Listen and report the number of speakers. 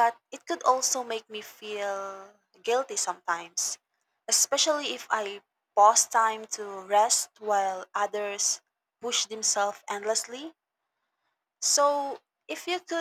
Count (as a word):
one